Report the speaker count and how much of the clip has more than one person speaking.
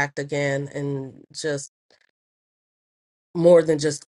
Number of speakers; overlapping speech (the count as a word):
one, no overlap